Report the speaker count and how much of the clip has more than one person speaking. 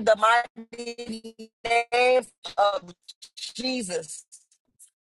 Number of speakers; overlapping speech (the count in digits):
1, no overlap